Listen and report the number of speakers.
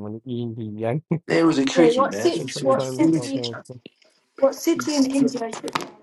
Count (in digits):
3